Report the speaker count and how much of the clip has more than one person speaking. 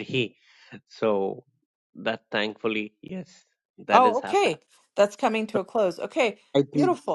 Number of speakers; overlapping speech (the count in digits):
2, about 11%